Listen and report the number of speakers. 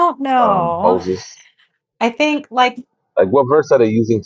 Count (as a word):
two